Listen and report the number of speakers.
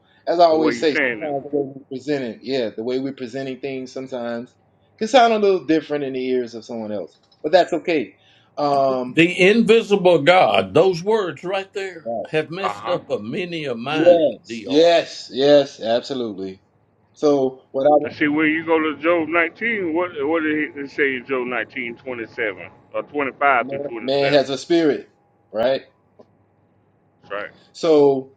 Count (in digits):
3